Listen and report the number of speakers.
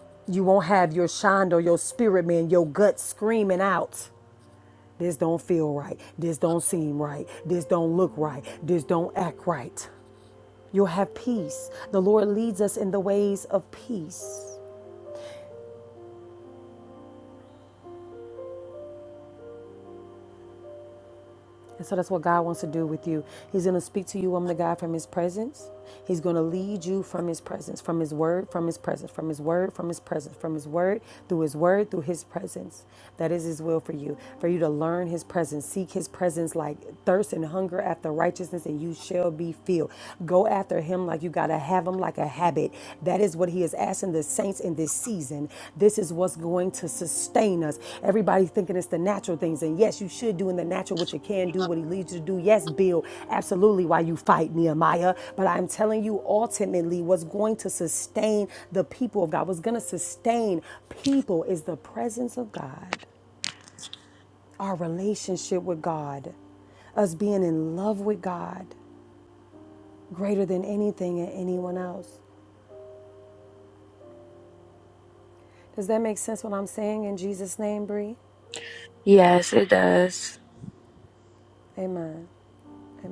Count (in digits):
2